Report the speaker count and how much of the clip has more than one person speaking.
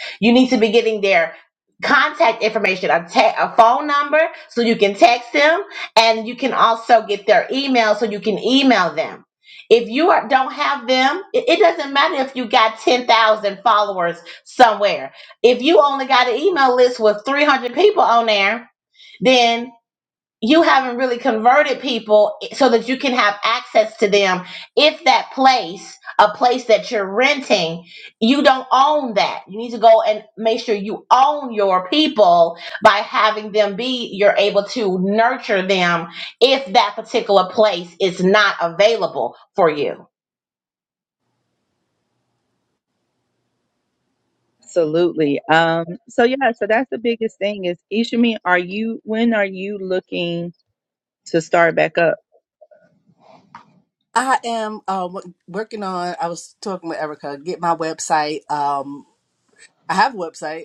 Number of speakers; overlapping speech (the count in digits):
3, no overlap